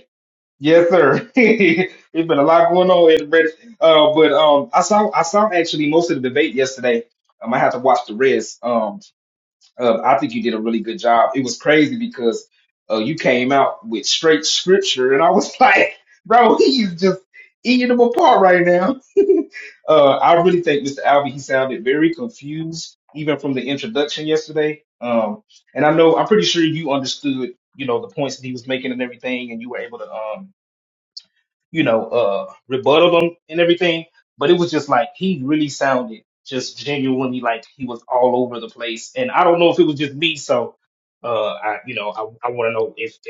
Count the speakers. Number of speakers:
one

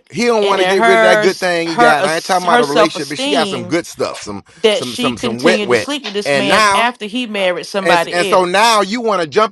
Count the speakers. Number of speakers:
two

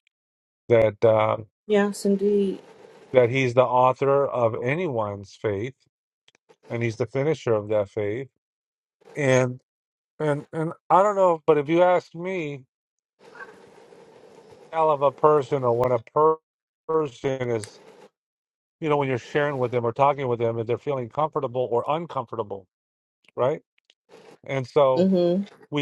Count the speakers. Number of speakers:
two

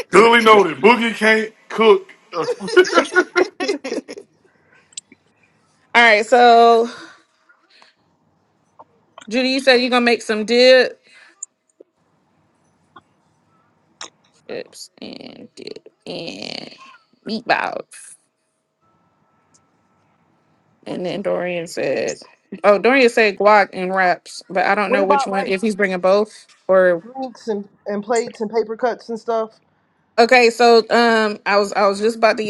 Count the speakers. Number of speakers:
three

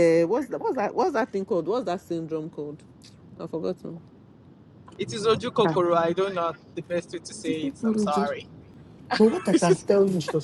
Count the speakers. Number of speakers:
three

